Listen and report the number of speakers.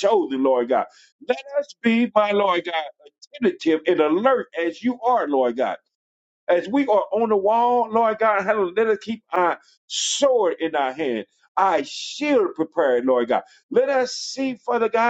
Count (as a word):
one